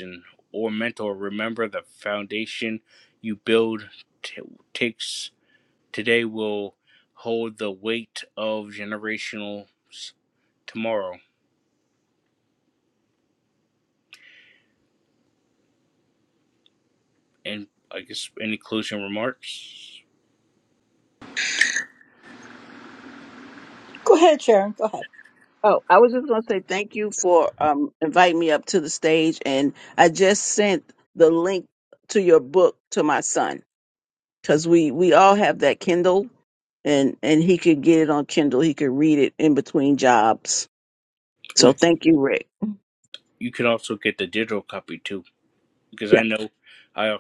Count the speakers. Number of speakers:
3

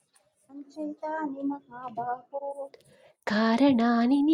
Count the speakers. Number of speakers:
2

